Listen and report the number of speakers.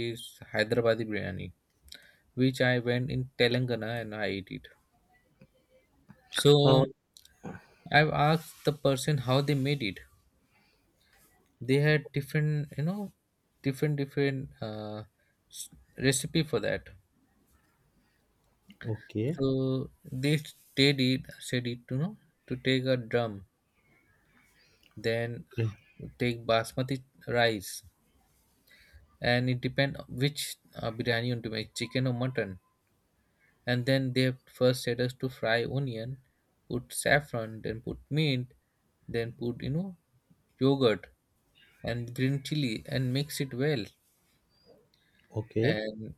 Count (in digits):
2